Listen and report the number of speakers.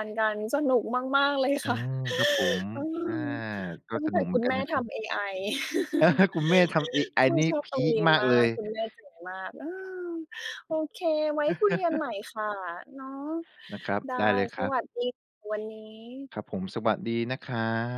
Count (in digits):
2